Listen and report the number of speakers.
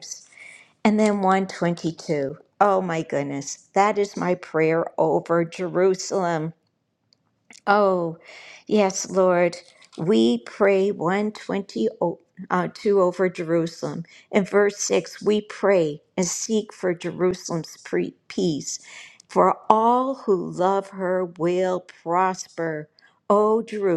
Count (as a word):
one